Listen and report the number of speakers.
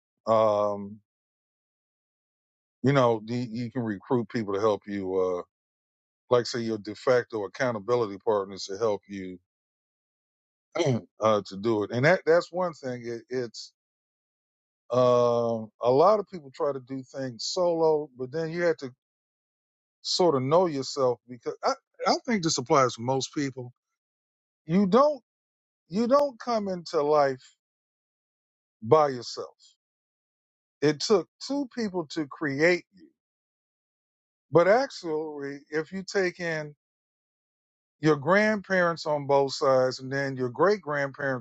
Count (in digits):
1